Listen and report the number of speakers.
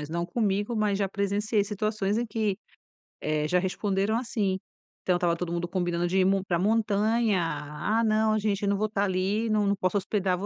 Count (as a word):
one